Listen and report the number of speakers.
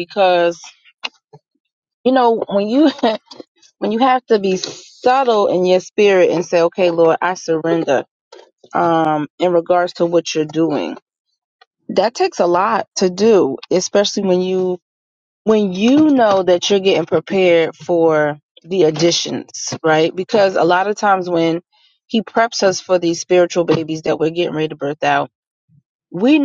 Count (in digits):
1